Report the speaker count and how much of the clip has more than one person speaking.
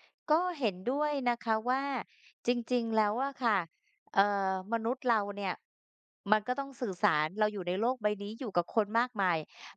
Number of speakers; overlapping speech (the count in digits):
1, no overlap